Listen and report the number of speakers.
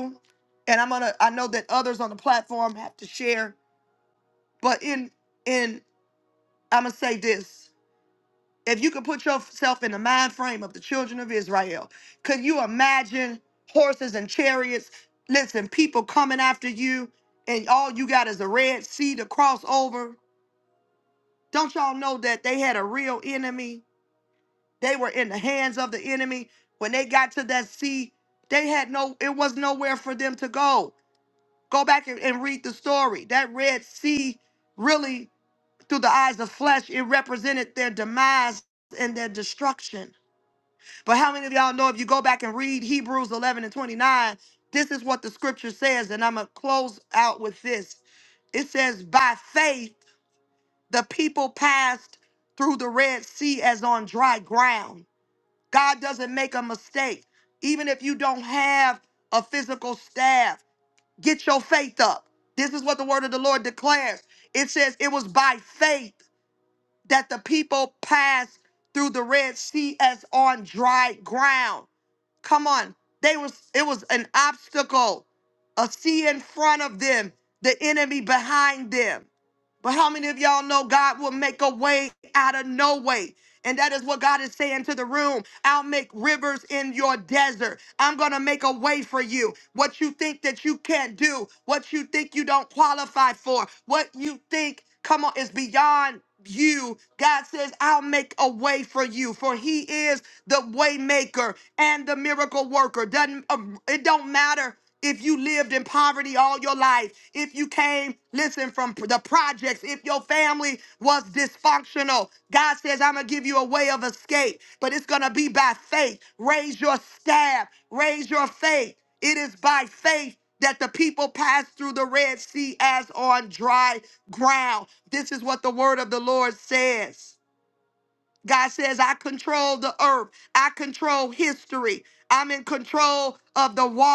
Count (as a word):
one